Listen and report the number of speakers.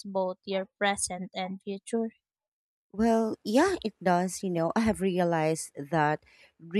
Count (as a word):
two